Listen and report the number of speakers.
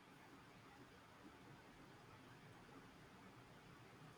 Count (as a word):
zero